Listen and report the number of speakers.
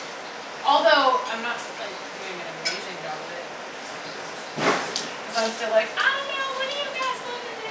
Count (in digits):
1